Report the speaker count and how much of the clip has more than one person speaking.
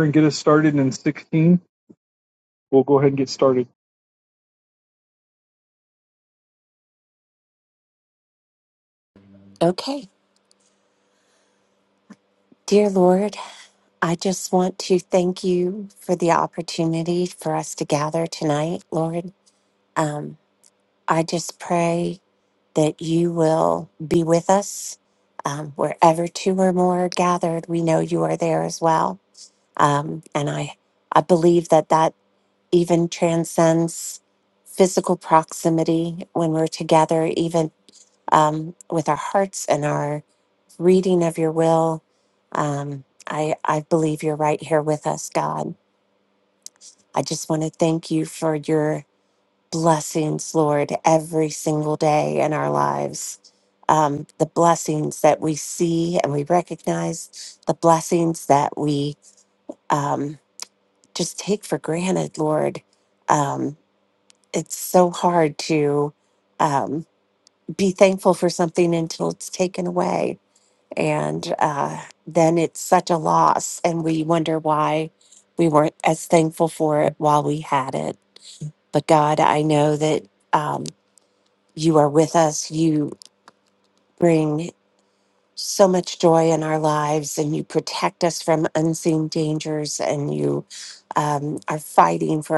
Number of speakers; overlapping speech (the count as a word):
two, no overlap